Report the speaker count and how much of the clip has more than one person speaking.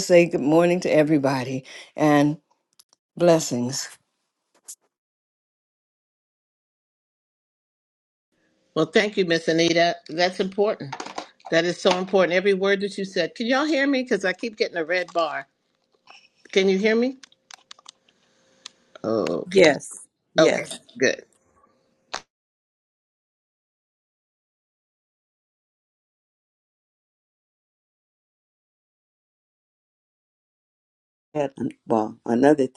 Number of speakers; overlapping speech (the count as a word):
three, about 2%